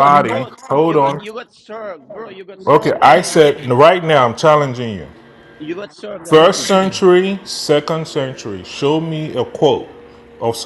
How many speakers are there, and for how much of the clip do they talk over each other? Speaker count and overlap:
2, about 24%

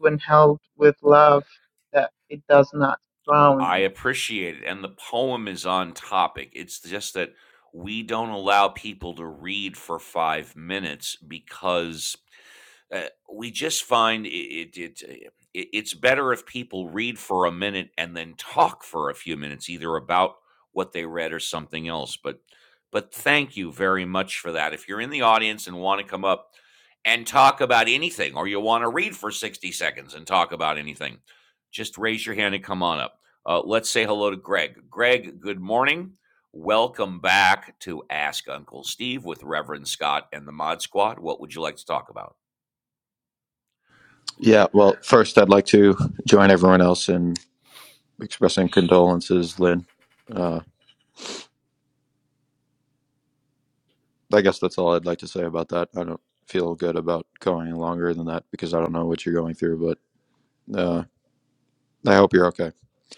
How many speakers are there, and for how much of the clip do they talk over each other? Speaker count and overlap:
3, under 1%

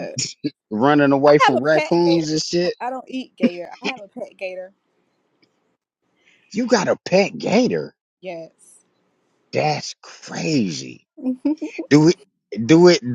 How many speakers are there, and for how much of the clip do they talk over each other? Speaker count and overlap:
2, about 9%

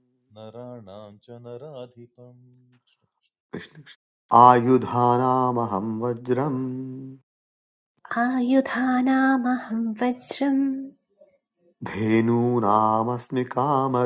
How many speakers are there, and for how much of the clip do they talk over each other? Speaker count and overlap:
3, no overlap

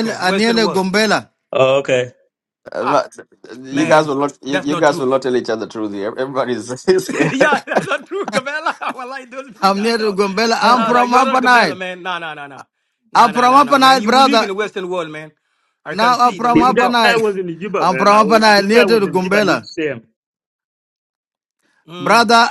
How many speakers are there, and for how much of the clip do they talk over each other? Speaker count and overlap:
4, about 39%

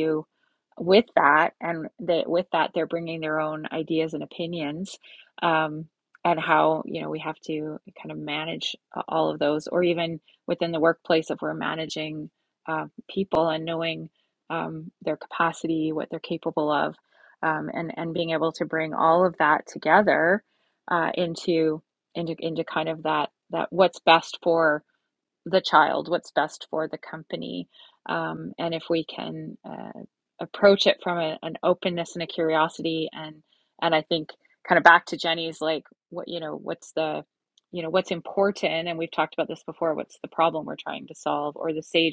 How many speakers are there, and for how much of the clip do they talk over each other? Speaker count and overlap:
1, no overlap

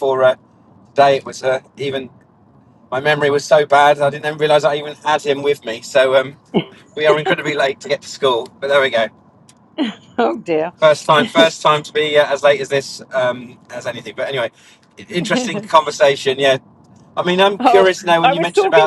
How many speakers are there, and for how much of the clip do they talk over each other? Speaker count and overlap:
2, about 7%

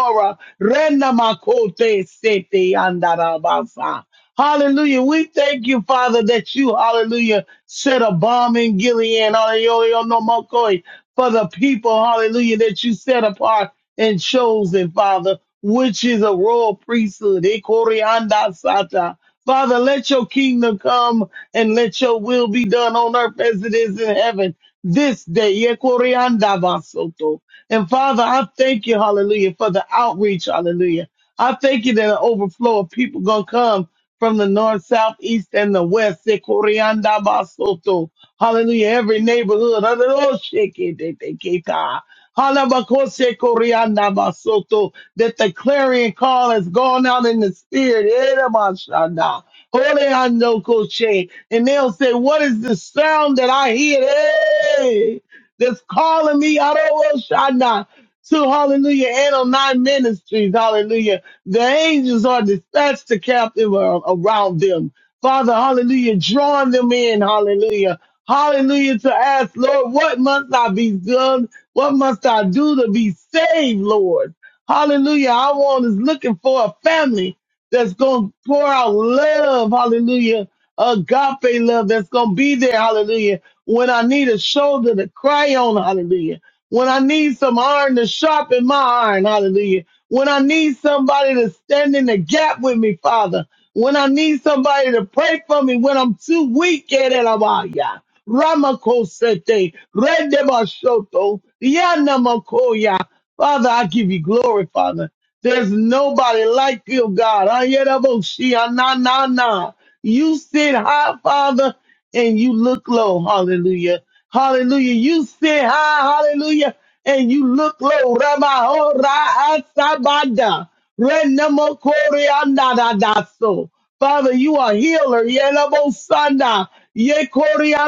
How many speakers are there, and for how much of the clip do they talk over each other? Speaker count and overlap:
1, no overlap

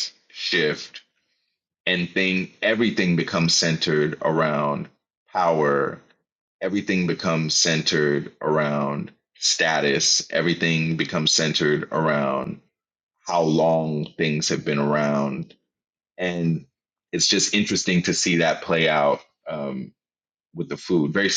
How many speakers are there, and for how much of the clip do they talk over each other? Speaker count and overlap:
1, no overlap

